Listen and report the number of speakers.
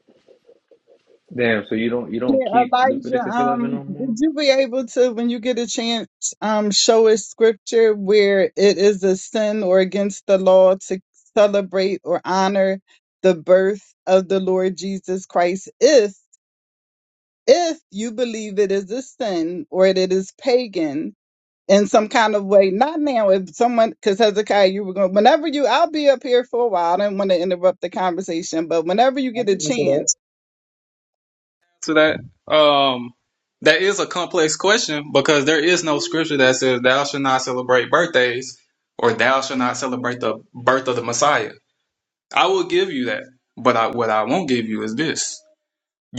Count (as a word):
three